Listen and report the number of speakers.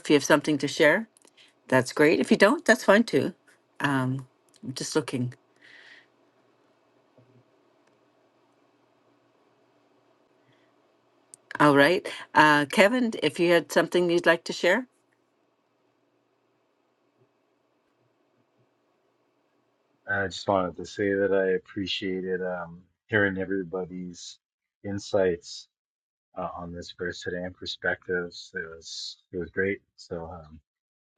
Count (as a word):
two